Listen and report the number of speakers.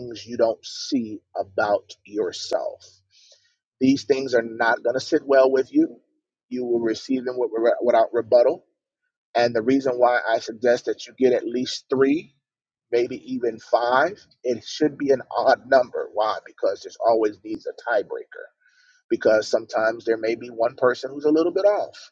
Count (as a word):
one